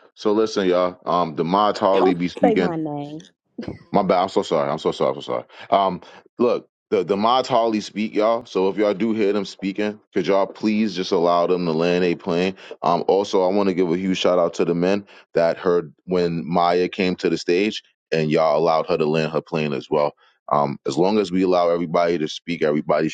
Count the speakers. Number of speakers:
two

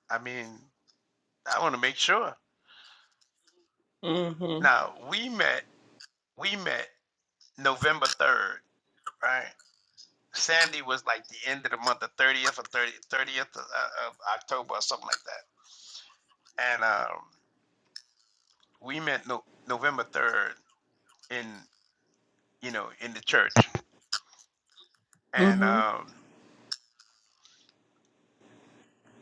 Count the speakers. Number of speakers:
two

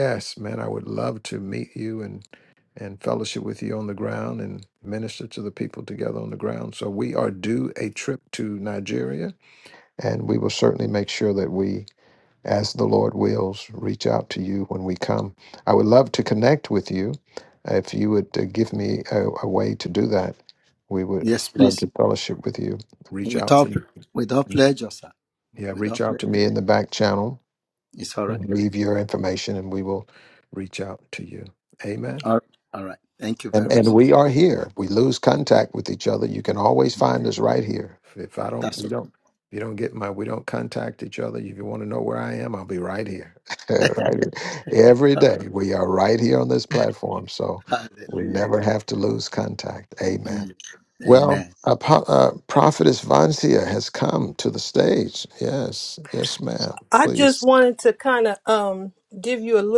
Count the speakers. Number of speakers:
three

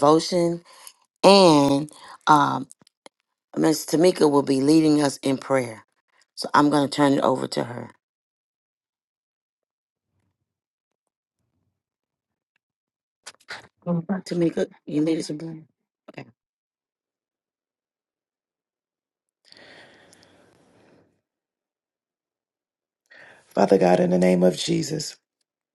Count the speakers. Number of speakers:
two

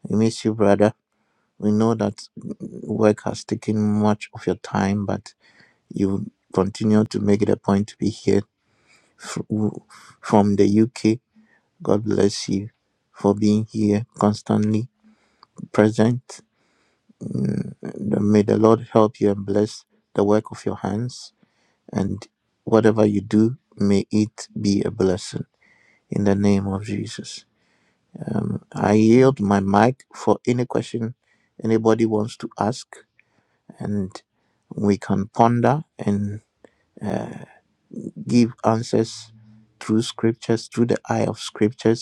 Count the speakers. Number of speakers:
one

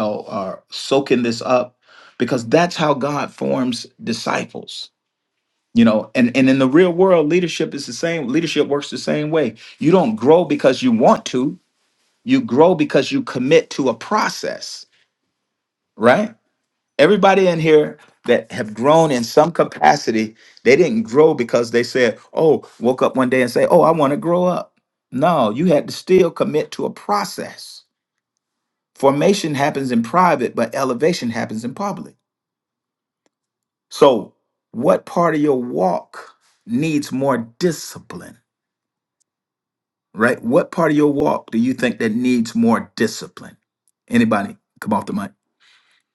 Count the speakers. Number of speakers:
one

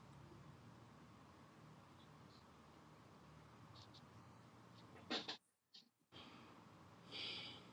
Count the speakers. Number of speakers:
zero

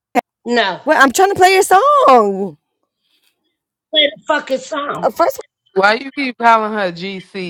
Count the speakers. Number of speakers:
three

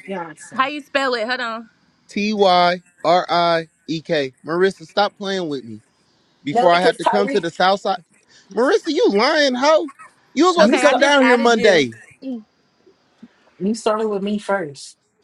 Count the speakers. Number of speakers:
three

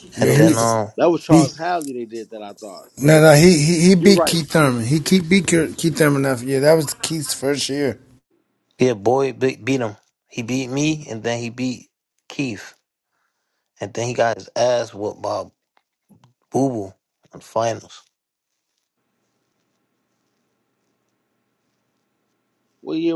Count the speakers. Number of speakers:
three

